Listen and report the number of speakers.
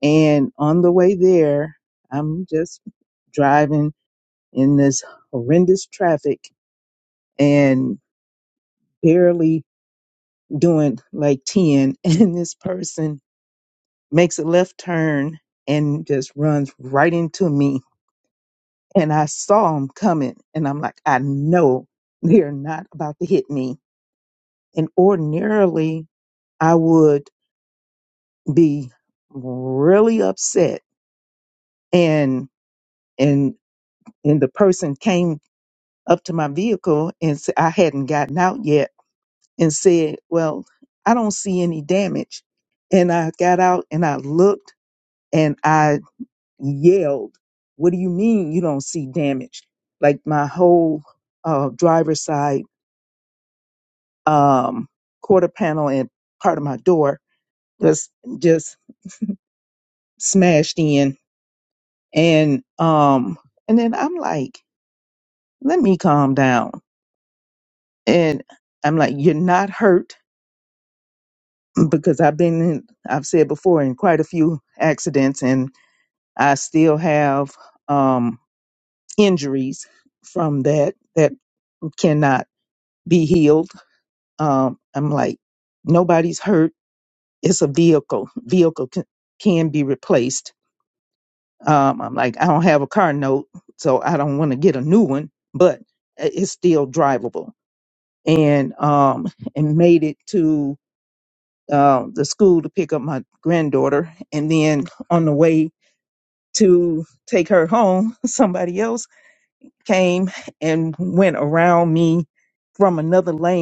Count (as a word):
one